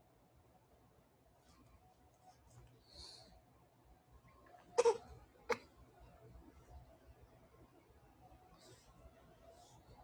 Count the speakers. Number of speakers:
zero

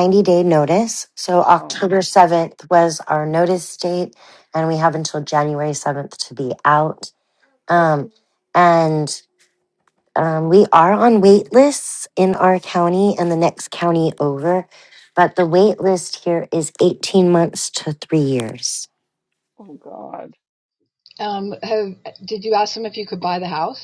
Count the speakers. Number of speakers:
three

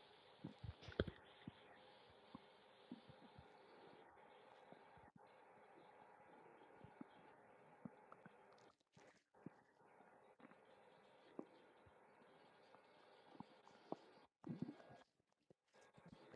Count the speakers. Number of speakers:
zero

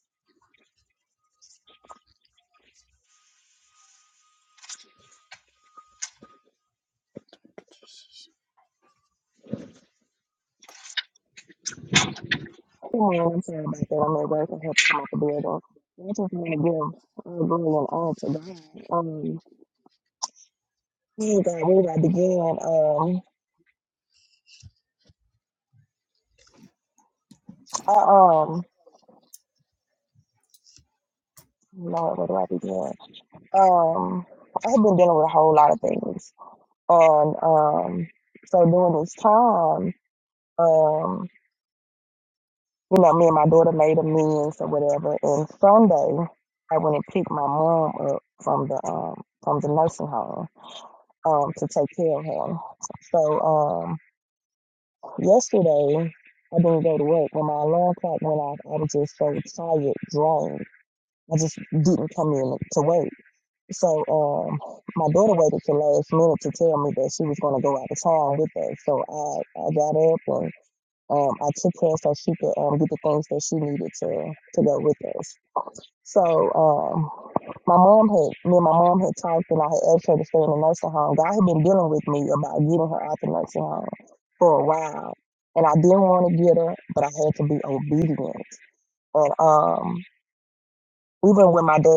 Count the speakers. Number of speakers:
one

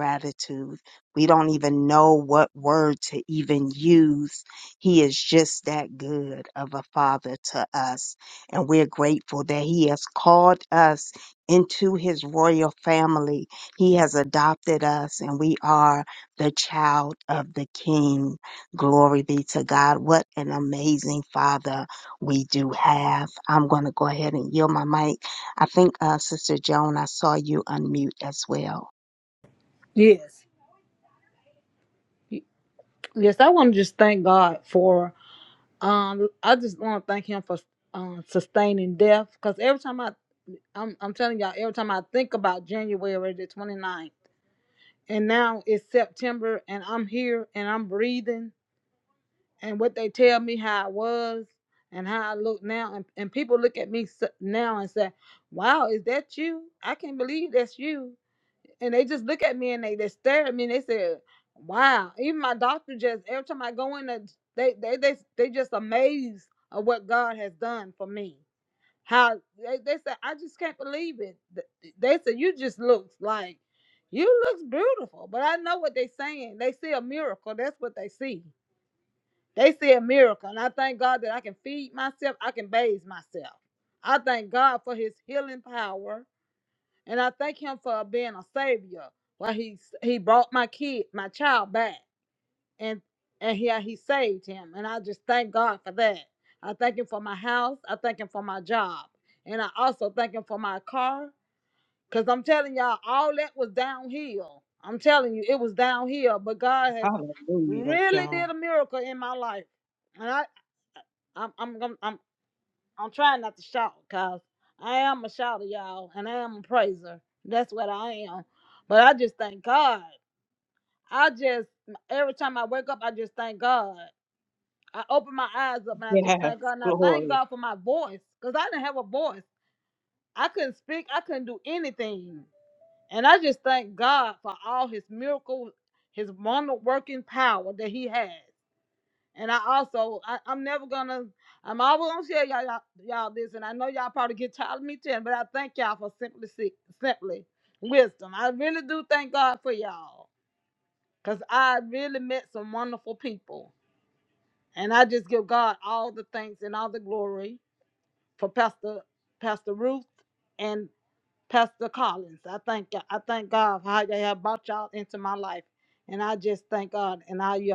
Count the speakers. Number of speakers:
three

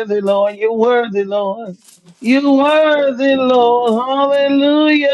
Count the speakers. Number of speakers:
one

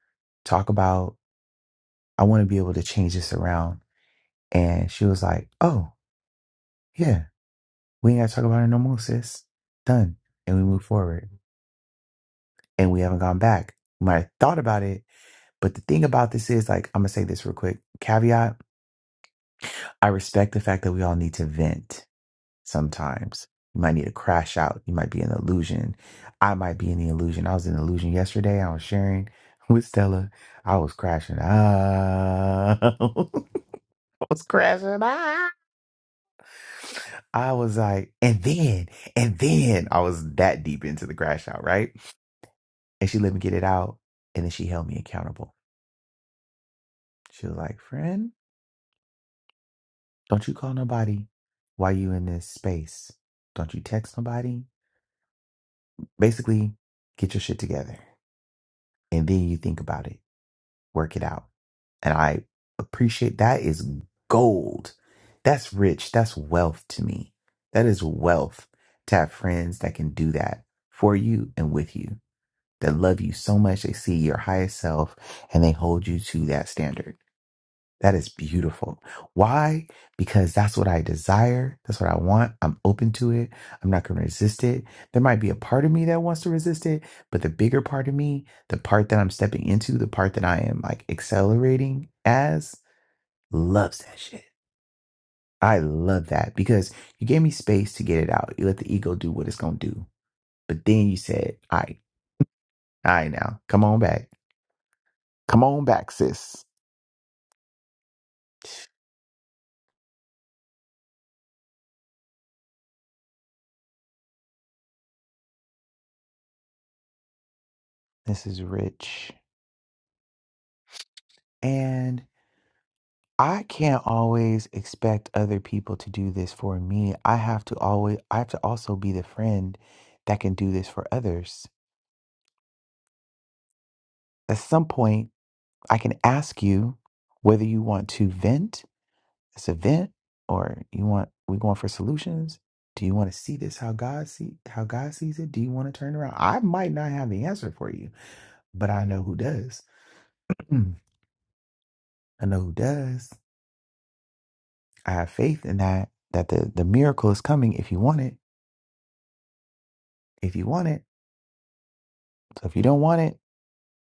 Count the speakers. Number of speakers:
one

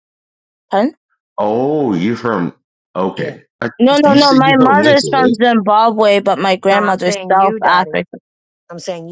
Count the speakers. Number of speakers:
three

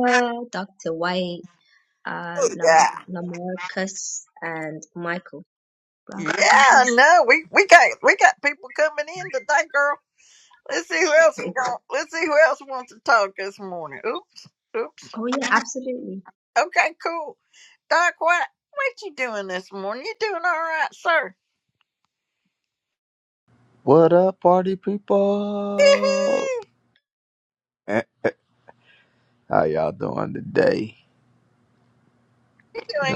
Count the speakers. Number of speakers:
three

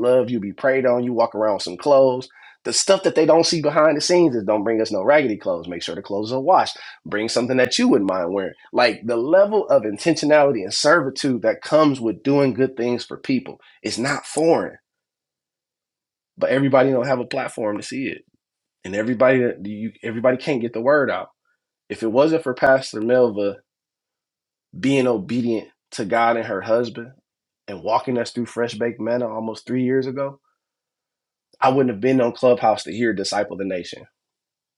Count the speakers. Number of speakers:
one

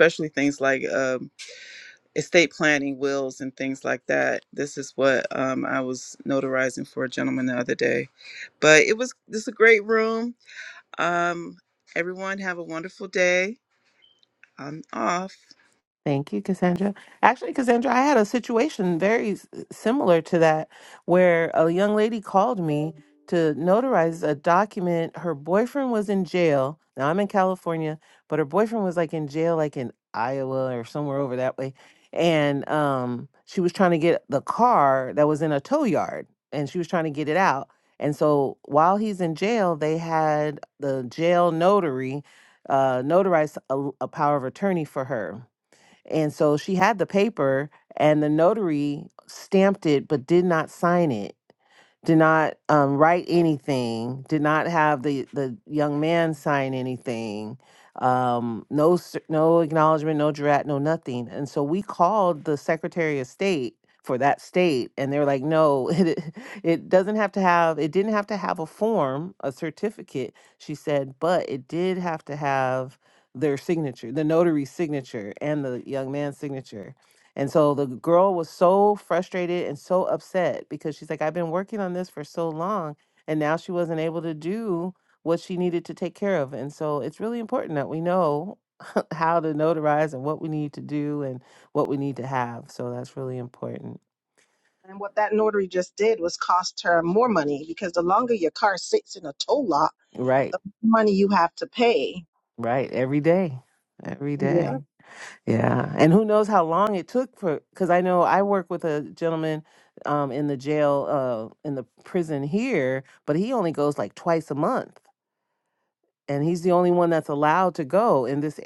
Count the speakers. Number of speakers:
three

